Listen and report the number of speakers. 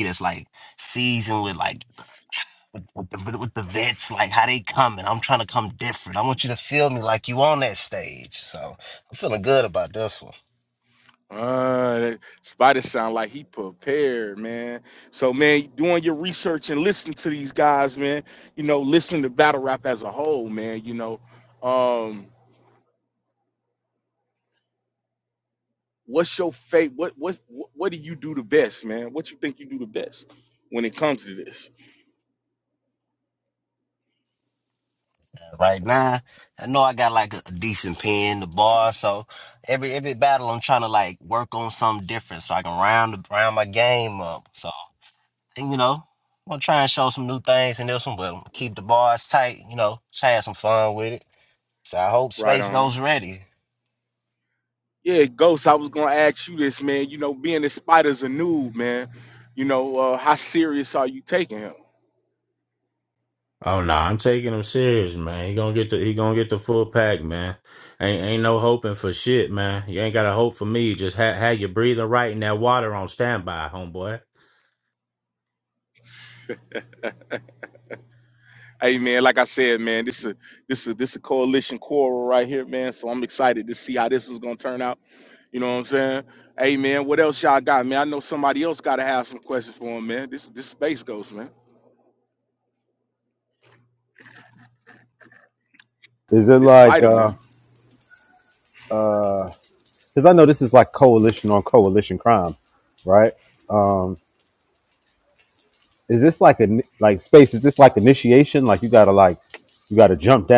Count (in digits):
4